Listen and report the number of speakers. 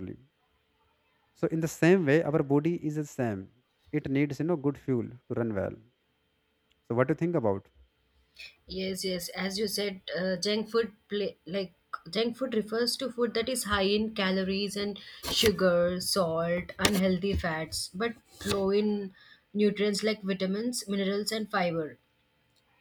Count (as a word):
two